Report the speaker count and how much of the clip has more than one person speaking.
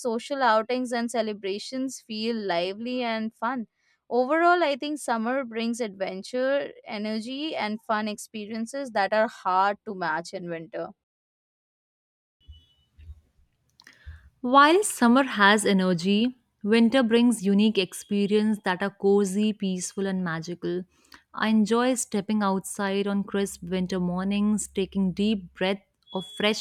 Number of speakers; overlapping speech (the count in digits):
2, no overlap